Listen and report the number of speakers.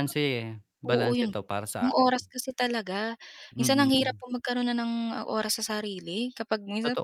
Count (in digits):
2